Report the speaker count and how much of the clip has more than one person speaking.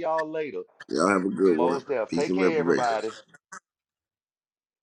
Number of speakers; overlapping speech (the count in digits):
2, about 23%